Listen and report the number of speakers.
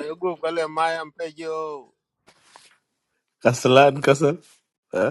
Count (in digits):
2